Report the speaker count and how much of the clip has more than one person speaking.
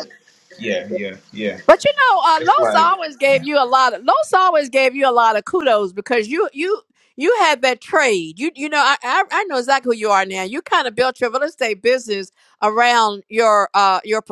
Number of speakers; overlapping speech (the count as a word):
two, about 5%